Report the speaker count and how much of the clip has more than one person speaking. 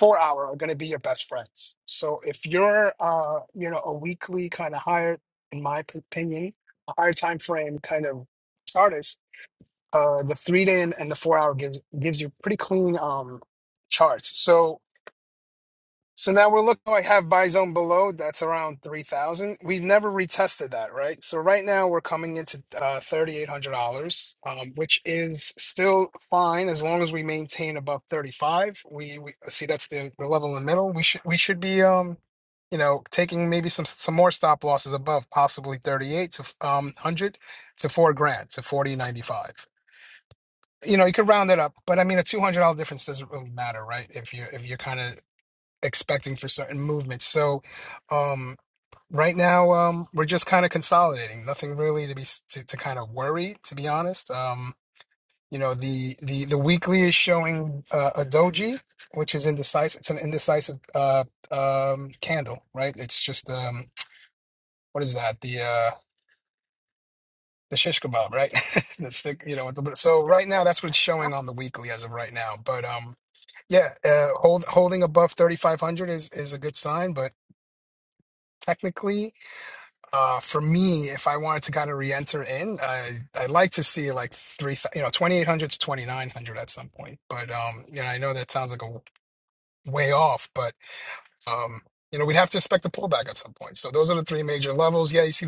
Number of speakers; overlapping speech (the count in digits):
1, no overlap